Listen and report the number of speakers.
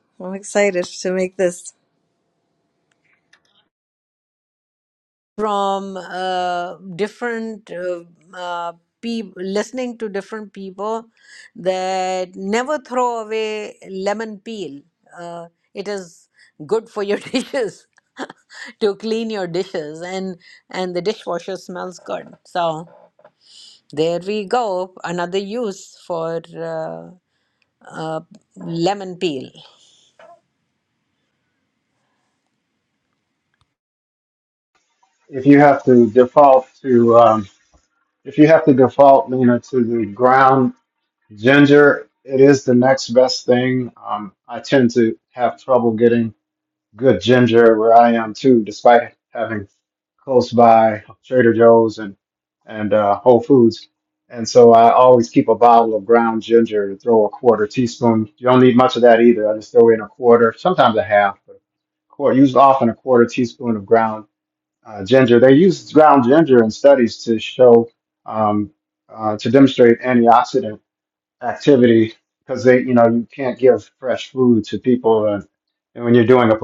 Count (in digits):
3